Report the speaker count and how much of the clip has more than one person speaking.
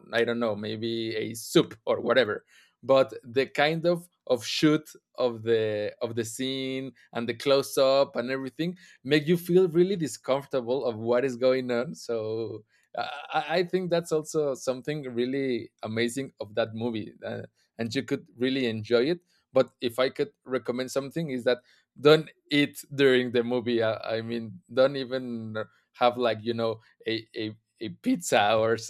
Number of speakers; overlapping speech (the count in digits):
1, no overlap